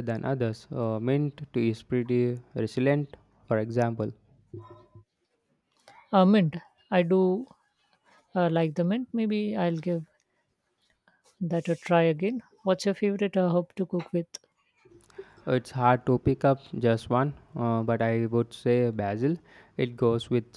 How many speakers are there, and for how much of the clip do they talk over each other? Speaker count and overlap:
two, no overlap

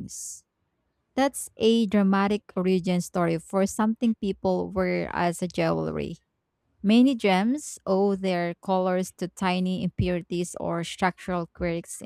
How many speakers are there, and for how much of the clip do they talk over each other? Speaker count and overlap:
one, no overlap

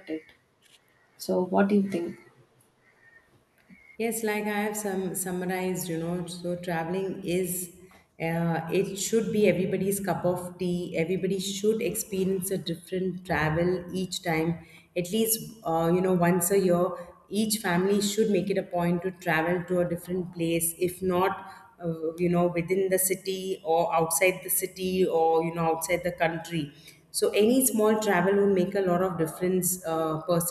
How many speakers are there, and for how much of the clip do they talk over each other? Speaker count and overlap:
two, no overlap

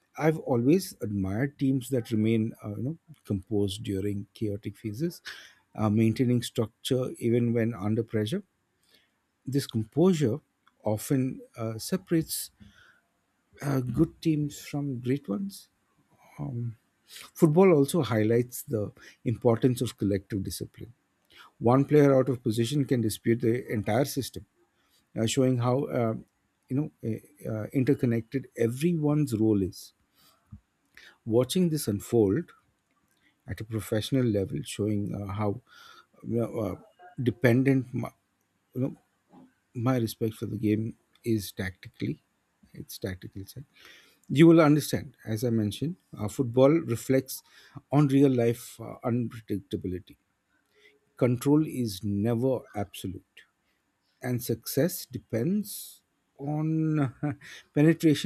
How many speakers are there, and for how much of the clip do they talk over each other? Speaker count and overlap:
one, no overlap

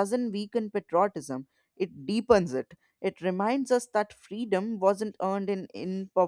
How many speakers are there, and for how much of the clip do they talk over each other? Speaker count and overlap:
one, no overlap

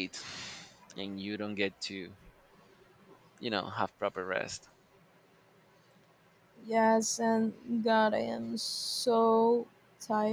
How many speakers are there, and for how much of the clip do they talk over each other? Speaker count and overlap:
two, no overlap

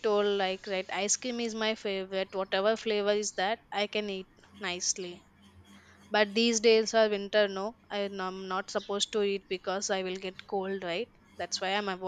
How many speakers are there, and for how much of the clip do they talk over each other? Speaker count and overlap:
one, no overlap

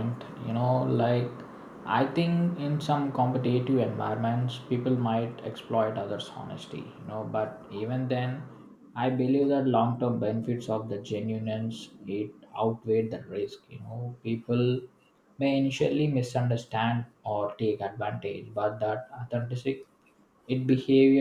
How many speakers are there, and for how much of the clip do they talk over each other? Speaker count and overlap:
one, no overlap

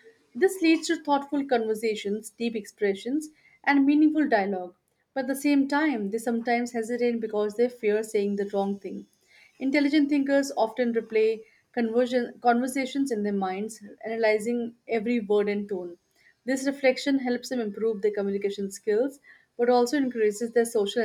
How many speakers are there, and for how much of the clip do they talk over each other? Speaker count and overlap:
one, no overlap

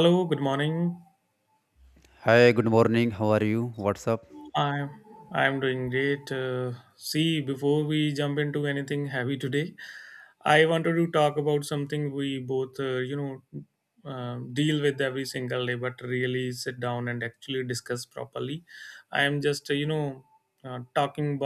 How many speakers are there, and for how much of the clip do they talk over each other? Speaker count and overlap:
two, no overlap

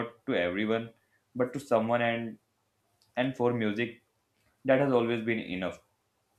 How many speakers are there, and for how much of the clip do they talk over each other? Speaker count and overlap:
one, no overlap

